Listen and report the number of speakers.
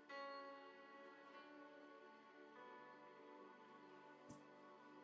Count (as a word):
zero